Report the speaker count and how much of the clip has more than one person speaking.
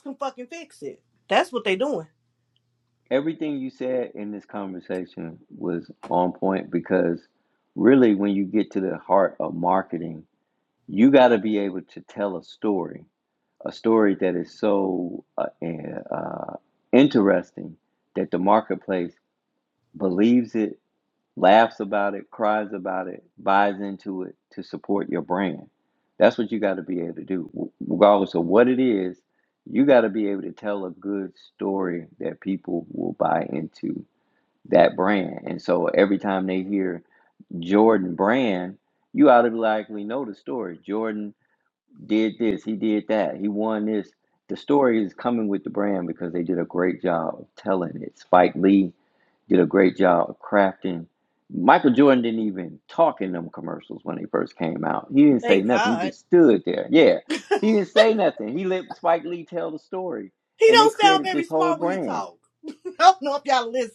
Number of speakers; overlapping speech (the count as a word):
two, about 4%